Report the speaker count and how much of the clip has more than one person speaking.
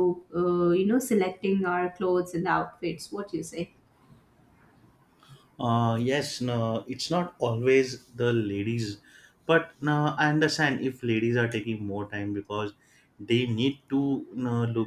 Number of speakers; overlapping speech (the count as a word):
two, no overlap